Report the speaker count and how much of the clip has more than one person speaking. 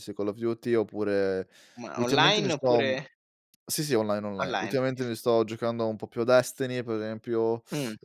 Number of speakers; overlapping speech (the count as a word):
two, about 20%